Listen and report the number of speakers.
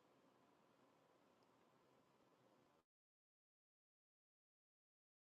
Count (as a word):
zero